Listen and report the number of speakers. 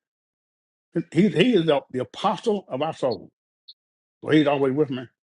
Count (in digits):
1